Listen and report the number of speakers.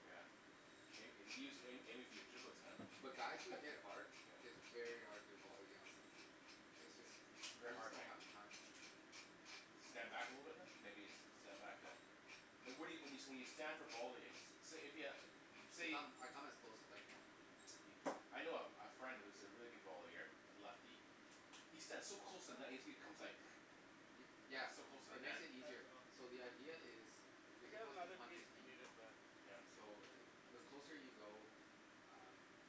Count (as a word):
two